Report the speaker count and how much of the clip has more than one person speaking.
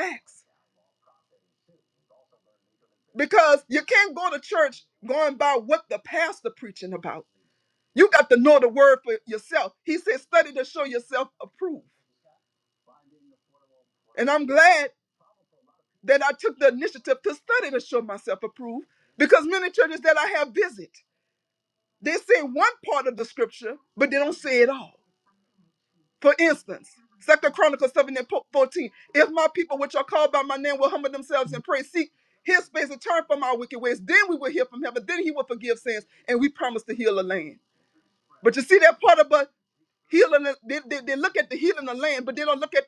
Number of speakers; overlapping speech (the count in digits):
1, no overlap